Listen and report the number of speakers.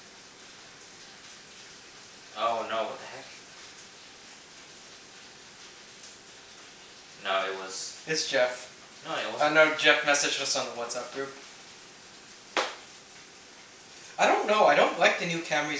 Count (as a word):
two